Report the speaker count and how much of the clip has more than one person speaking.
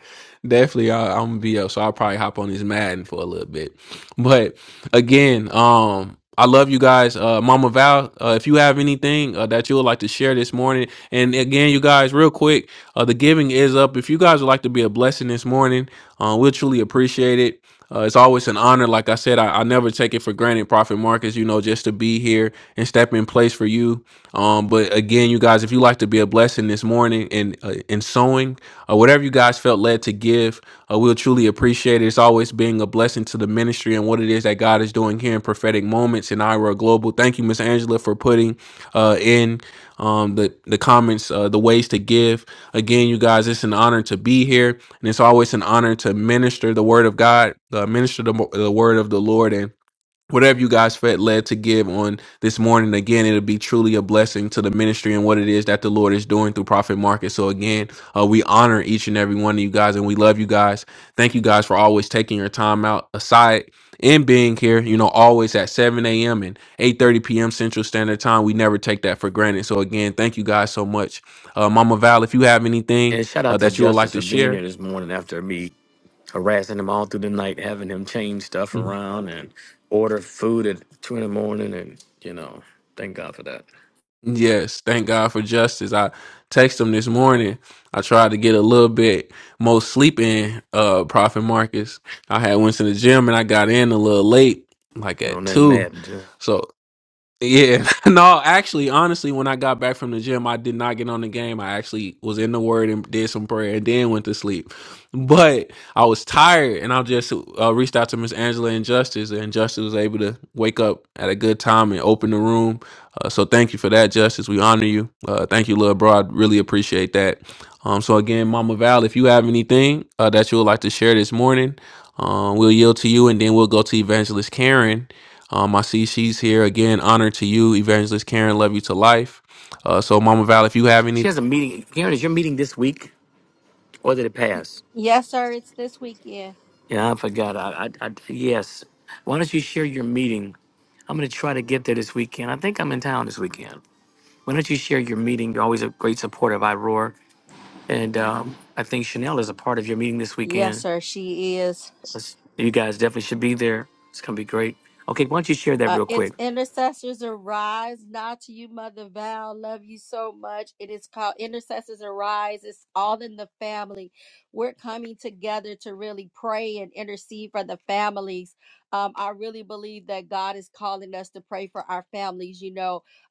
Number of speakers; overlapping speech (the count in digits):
3, about 2%